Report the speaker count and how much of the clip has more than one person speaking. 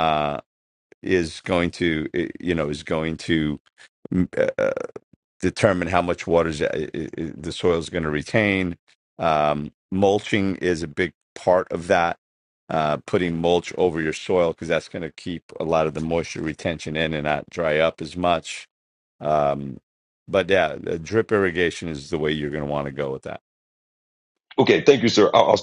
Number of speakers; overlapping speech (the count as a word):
two, no overlap